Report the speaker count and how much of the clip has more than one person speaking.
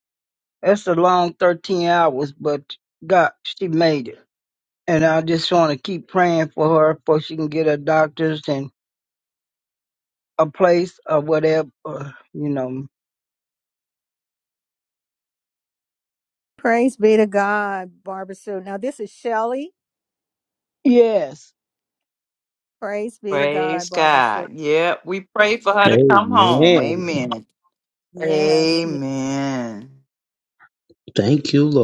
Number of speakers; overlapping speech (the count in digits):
4, about 10%